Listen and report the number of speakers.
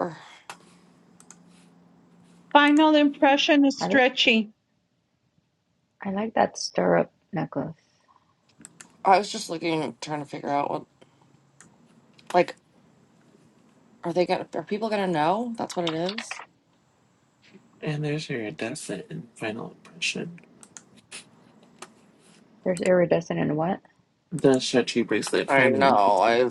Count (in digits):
4